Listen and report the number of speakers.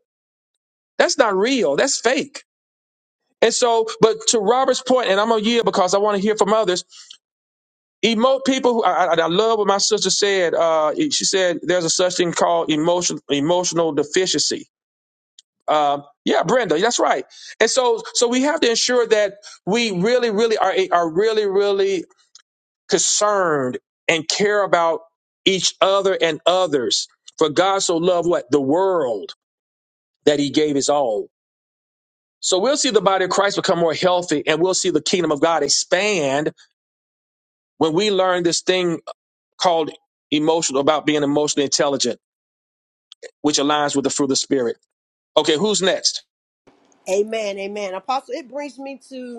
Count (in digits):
2